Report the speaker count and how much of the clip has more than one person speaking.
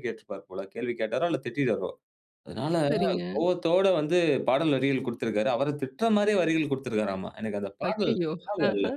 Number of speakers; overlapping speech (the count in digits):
2, about 12%